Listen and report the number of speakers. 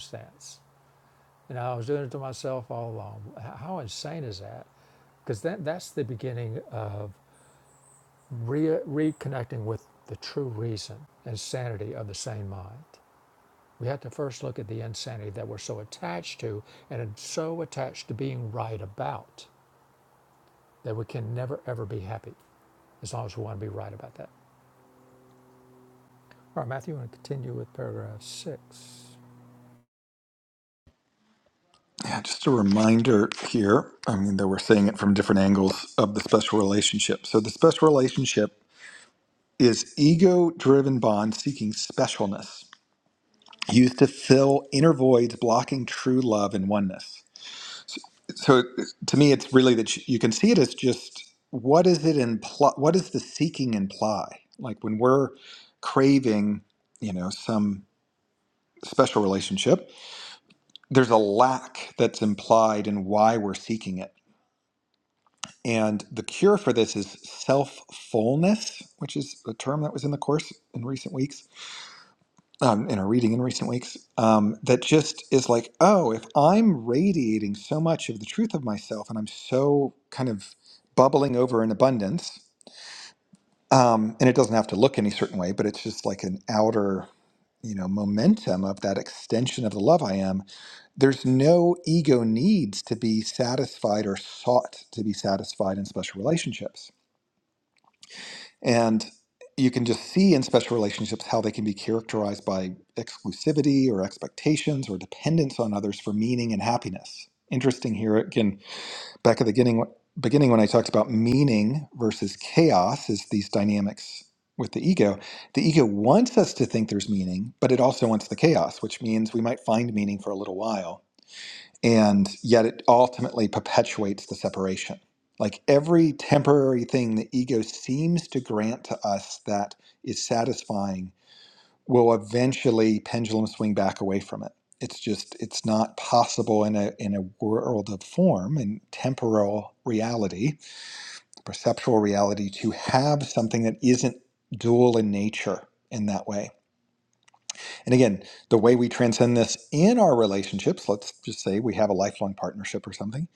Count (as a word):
two